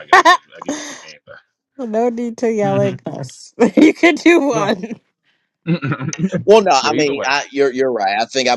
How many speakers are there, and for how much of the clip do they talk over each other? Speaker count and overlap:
3, about 9%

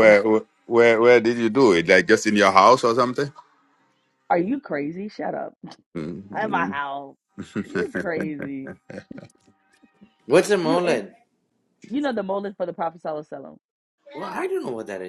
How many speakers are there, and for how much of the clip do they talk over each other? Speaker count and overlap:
3, about 6%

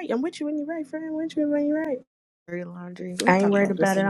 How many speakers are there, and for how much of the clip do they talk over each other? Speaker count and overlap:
2, about 21%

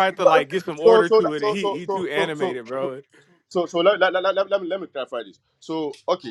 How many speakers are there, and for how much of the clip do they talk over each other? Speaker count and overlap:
2, about 33%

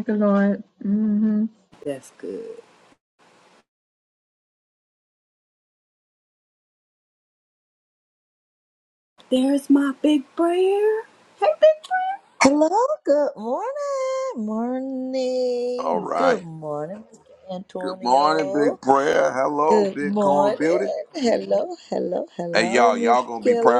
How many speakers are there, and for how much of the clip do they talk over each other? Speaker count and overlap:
4, about 15%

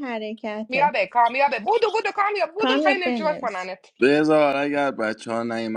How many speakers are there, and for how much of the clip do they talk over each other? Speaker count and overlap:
3, about 19%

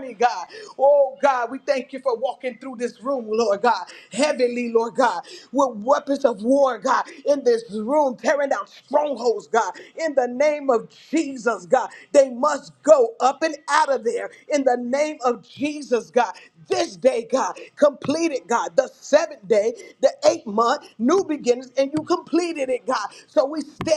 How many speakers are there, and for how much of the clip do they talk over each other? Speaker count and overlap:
1, no overlap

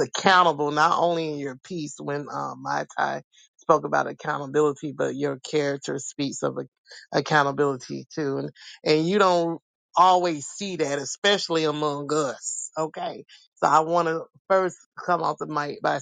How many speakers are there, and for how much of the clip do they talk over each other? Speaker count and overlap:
1, no overlap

